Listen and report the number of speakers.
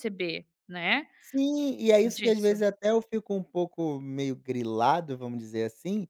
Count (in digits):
2